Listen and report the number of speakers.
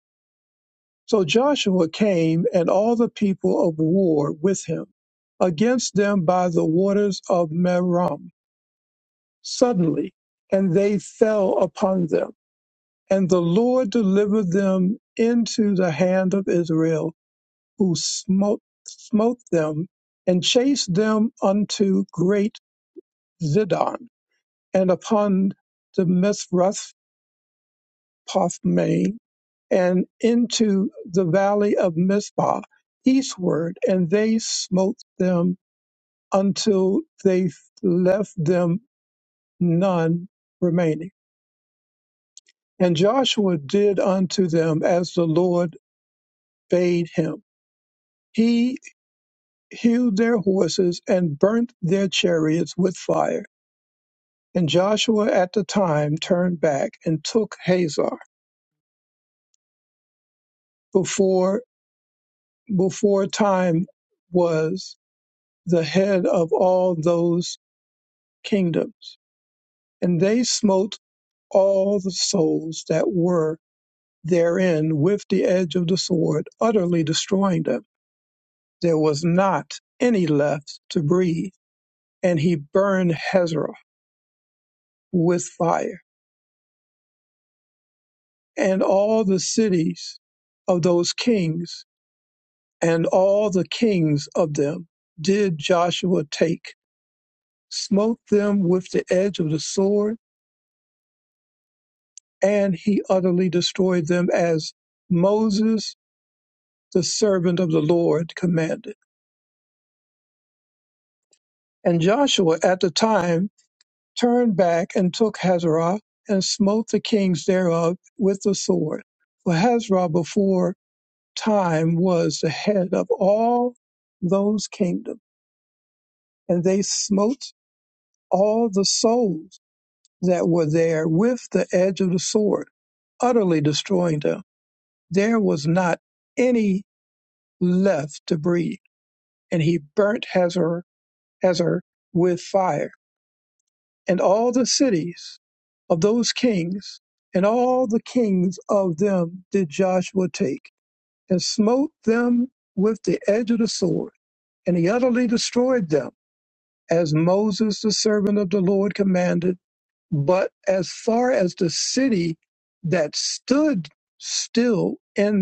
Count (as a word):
one